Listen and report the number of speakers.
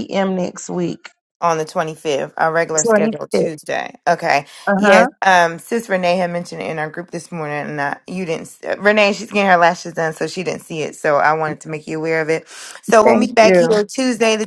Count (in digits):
2